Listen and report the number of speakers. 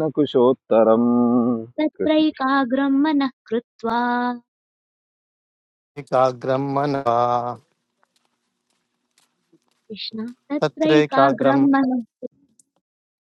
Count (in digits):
3